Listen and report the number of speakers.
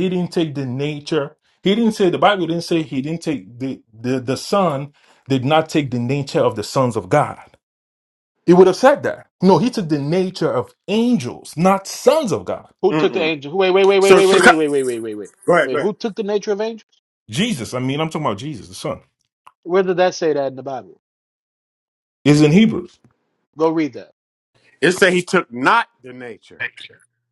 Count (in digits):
3